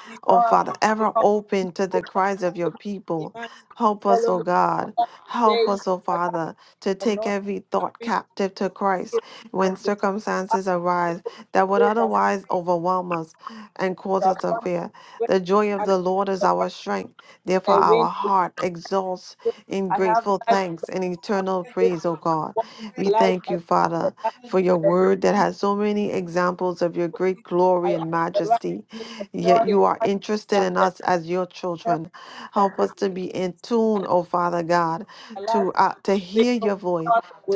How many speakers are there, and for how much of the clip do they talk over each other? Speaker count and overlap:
2, about 23%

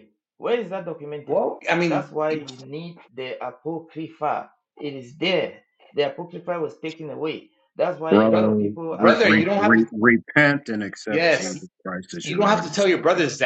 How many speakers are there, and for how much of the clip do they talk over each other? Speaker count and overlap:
3, about 26%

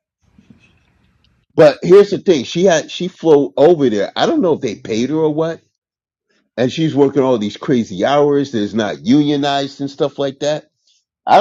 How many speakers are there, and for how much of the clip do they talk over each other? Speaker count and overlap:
1, no overlap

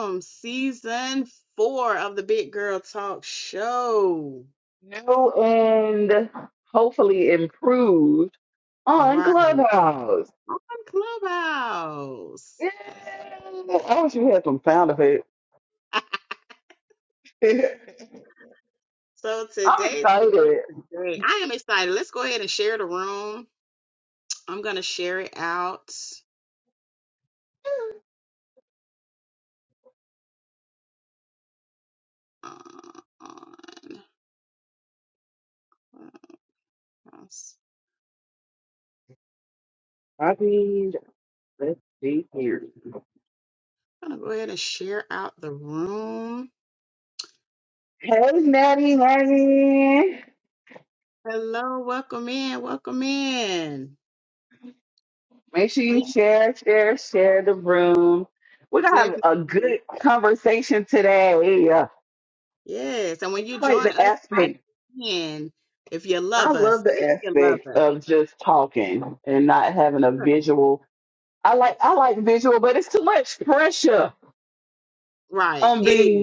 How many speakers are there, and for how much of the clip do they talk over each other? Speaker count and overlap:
2, about 7%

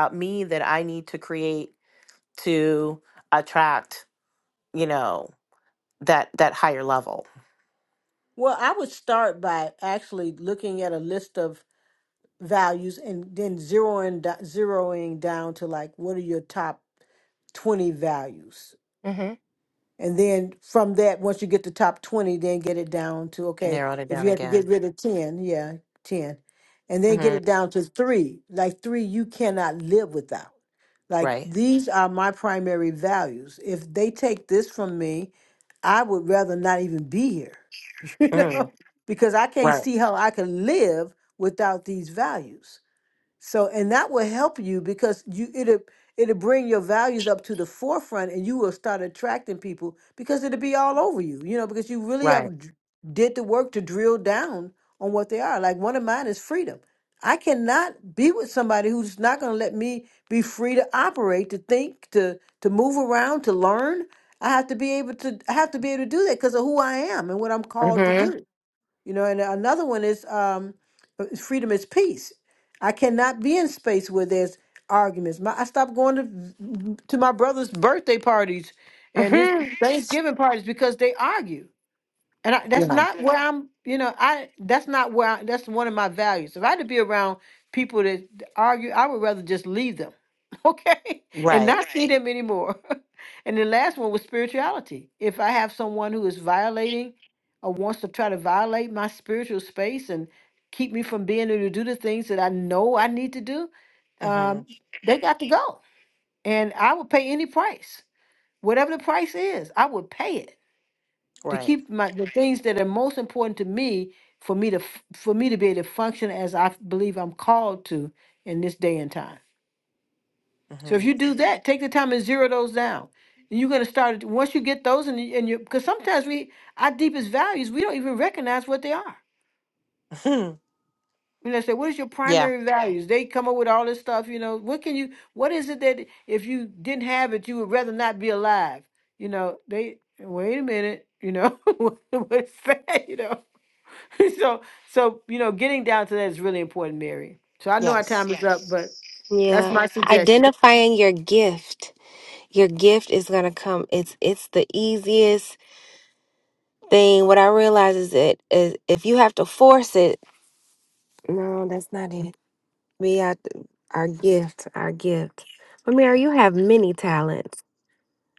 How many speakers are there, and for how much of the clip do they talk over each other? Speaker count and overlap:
3, about 4%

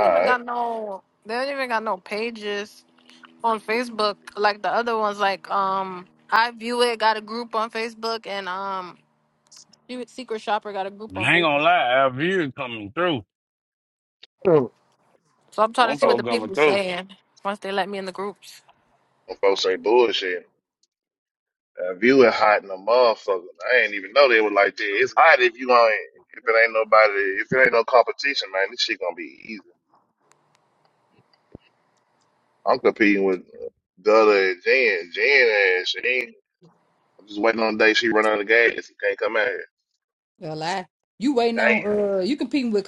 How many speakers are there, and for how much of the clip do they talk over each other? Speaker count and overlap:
4, about 5%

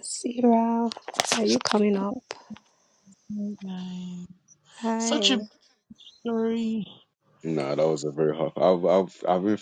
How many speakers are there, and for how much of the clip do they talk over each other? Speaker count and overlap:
3, about 4%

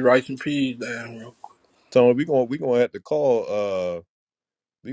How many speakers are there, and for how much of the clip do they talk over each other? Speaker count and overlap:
2, no overlap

